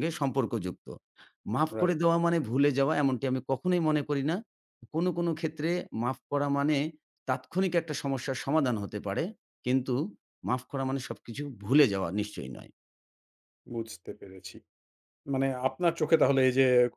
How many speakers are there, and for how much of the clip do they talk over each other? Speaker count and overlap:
two, about 1%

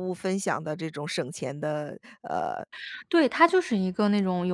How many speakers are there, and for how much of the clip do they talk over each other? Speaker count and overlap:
two, no overlap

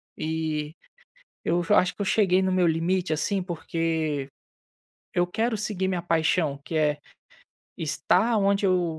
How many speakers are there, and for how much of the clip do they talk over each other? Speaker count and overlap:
one, no overlap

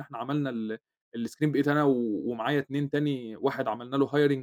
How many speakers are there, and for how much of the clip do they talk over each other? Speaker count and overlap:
one, no overlap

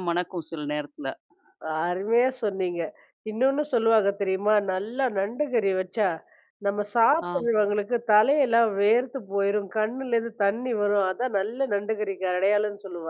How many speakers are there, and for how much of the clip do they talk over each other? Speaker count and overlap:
two, about 2%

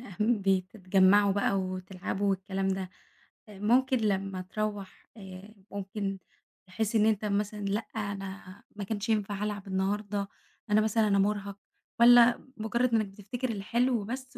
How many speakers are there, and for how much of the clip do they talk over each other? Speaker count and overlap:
one, no overlap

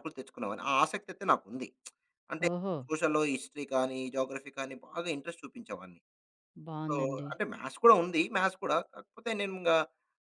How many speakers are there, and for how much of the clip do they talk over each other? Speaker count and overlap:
two, about 5%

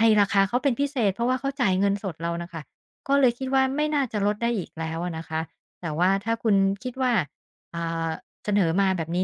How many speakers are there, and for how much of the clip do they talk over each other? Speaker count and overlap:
one, no overlap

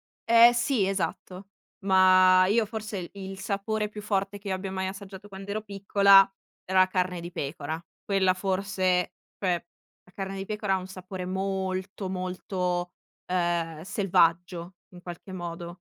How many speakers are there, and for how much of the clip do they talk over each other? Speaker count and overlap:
one, no overlap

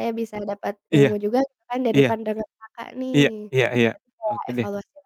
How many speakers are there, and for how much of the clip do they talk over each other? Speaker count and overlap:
two, about 17%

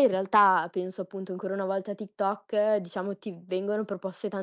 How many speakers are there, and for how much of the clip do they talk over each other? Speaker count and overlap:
one, no overlap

